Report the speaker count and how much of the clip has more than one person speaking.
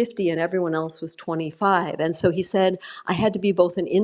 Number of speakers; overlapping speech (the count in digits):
1, no overlap